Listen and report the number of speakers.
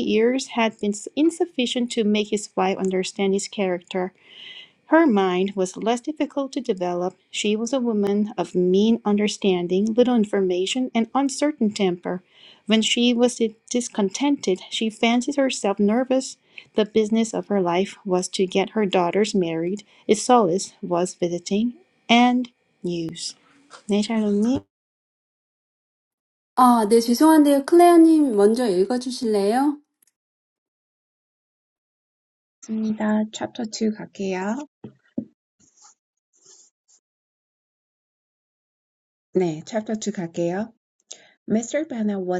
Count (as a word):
three